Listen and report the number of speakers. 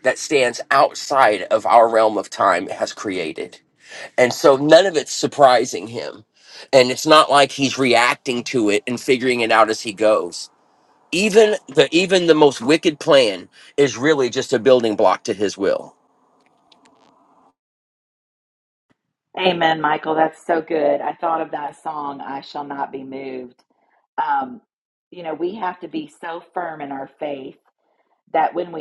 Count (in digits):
2